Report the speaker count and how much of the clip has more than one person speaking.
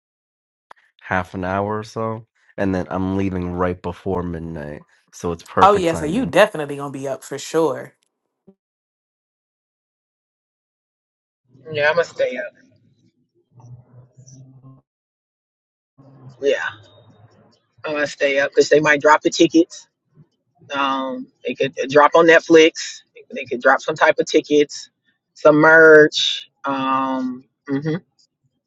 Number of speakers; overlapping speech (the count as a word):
three, about 2%